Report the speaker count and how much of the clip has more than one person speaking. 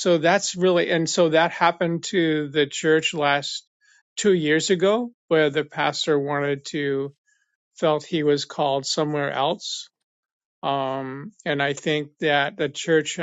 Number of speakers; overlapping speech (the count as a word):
one, no overlap